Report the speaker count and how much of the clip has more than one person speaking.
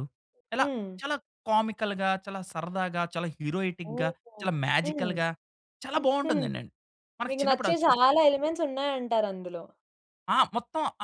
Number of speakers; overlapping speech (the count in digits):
2, about 23%